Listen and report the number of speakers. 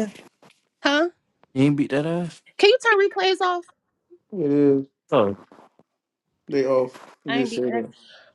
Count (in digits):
3